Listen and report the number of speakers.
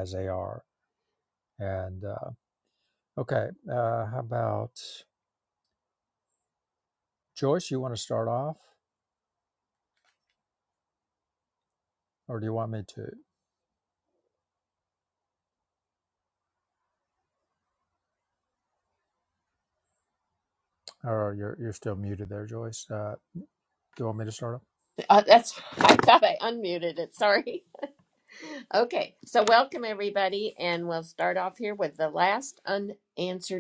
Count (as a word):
two